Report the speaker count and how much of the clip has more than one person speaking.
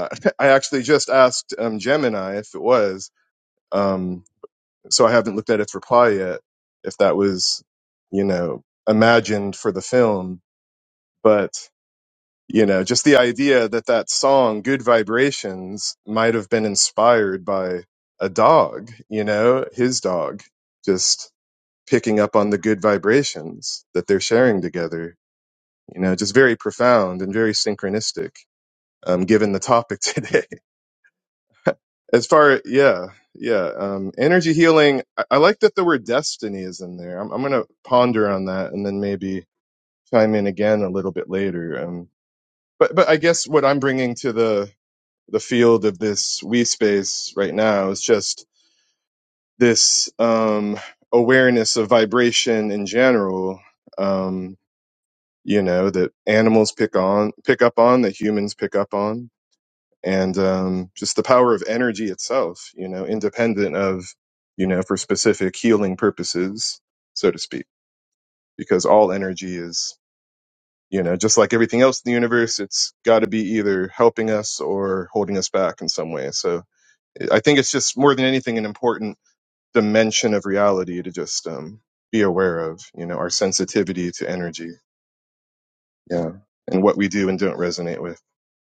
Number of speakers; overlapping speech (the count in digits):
1, no overlap